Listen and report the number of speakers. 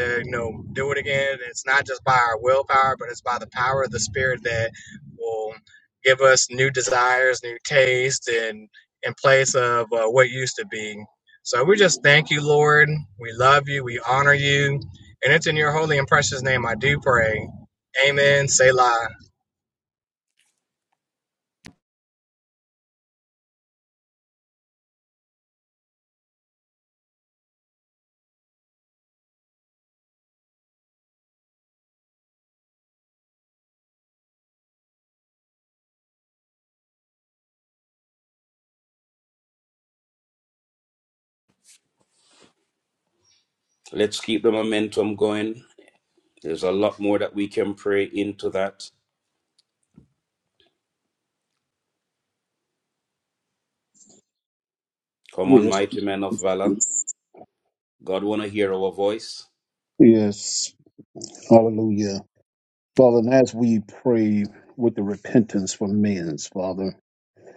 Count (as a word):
three